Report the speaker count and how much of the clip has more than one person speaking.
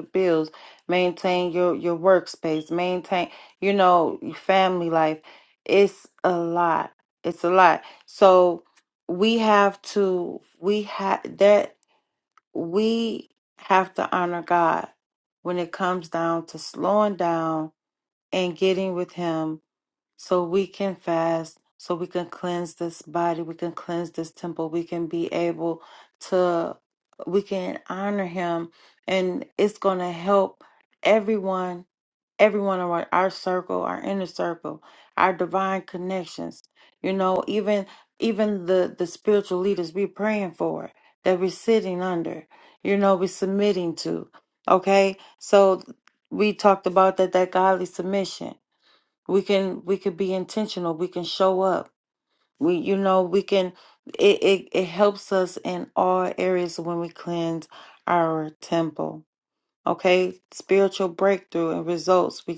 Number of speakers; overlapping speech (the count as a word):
one, no overlap